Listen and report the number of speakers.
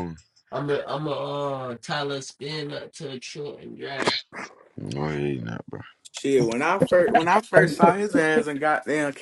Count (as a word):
three